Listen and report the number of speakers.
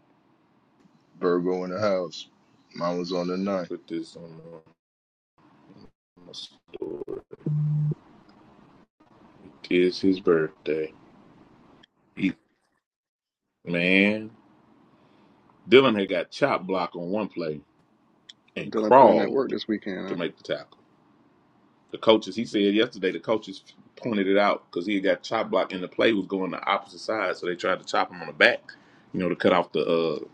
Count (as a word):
three